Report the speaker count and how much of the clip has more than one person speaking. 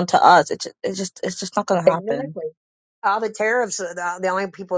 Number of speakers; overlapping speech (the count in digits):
2, about 9%